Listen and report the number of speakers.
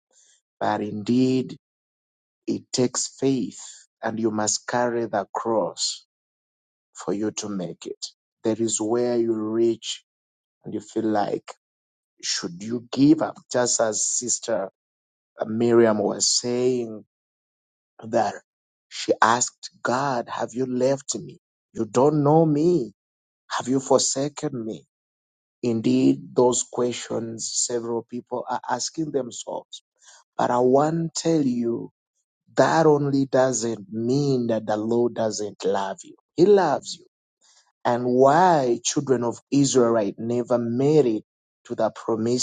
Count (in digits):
1